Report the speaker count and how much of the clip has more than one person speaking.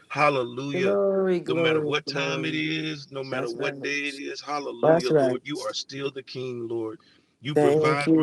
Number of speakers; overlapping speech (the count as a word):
two, about 38%